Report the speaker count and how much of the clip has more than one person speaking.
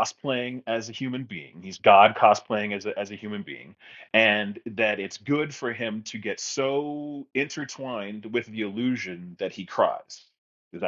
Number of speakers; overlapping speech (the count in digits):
1, no overlap